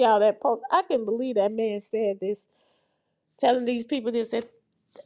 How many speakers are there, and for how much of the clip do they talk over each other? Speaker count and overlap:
1, no overlap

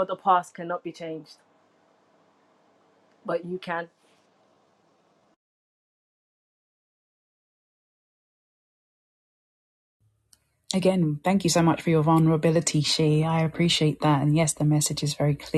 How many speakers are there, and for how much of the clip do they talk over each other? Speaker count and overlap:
2, no overlap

